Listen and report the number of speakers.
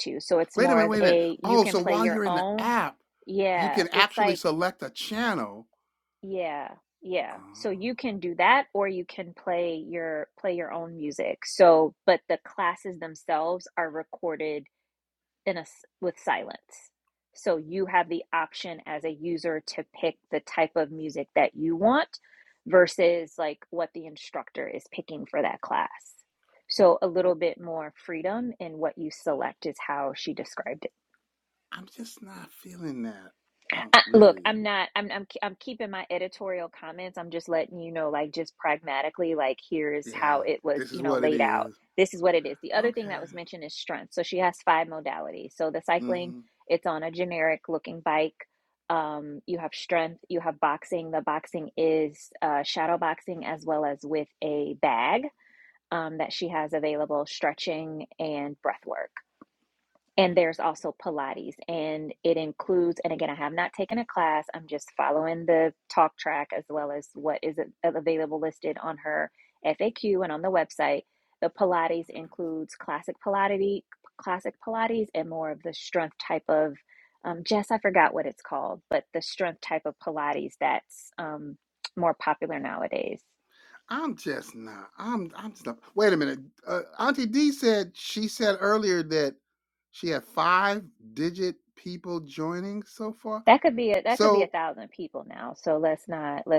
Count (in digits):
2